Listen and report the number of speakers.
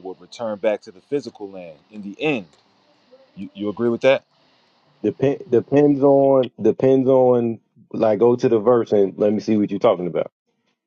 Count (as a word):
two